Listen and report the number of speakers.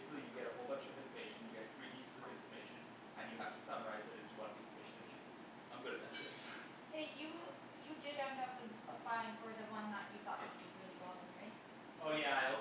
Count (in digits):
2